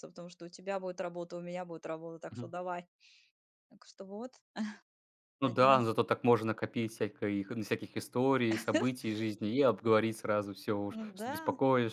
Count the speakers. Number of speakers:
two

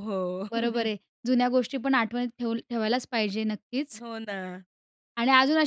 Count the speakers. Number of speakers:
two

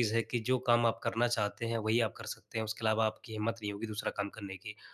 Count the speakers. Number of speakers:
one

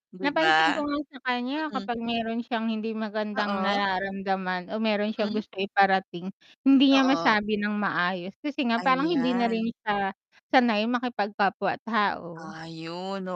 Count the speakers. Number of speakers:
two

